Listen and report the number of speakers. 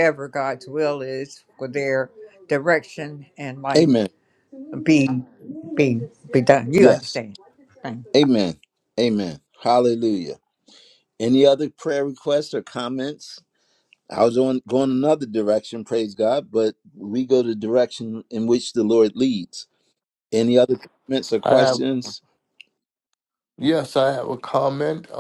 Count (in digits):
3